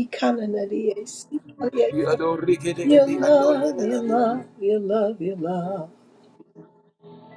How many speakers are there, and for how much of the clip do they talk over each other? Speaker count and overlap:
two, about 17%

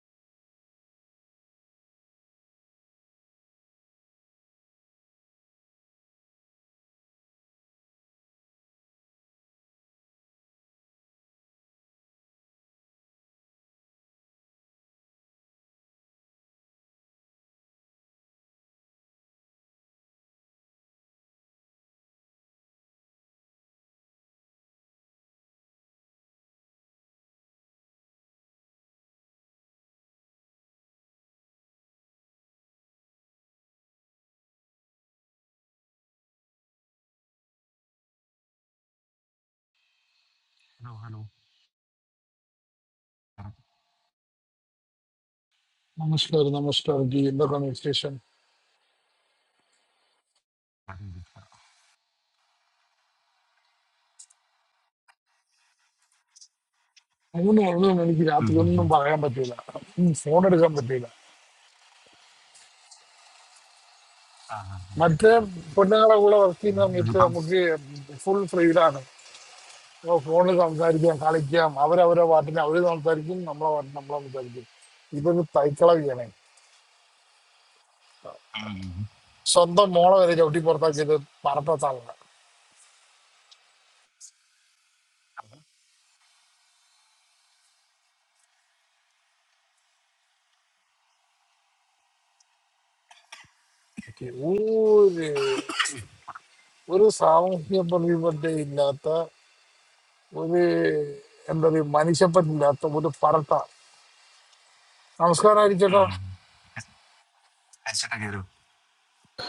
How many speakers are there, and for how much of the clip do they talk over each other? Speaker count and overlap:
two, about 1%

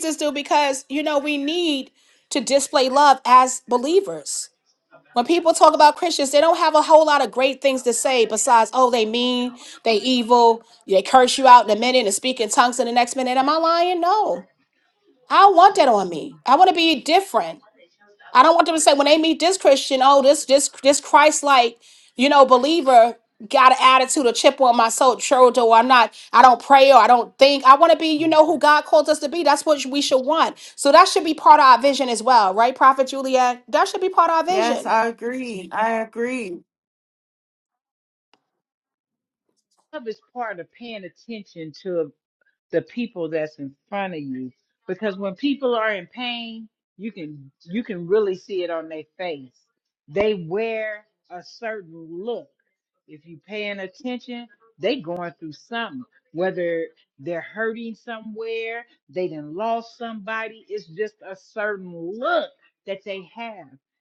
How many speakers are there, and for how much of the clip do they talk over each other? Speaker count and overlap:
three, about 1%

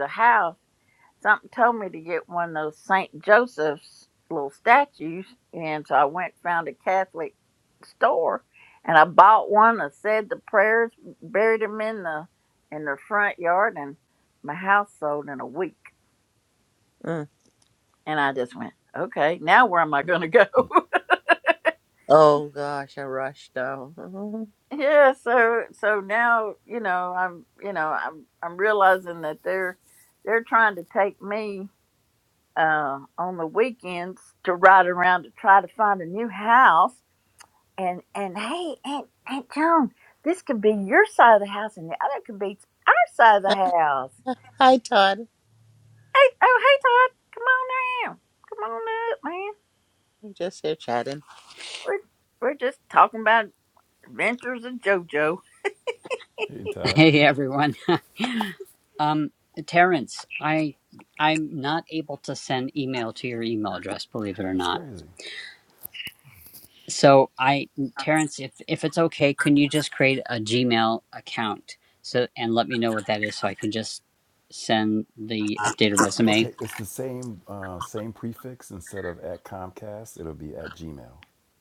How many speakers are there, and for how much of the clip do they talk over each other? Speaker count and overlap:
four, about 1%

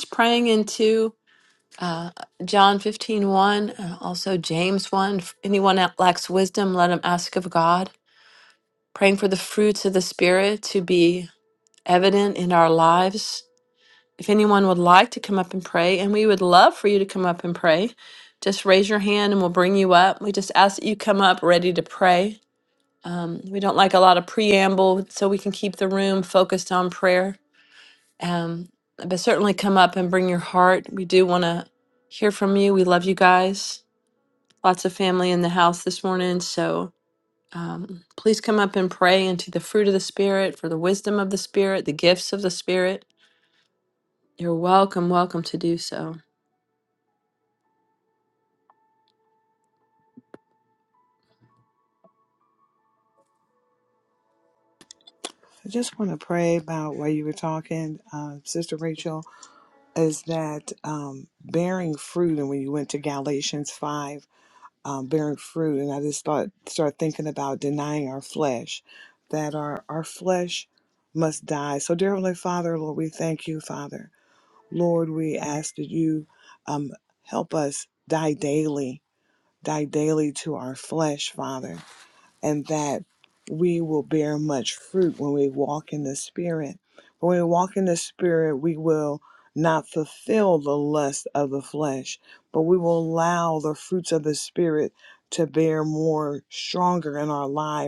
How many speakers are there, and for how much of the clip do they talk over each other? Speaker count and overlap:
two, no overlap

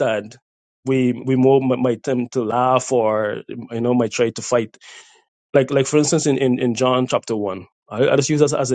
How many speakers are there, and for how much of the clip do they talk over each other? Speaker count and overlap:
one, no overlap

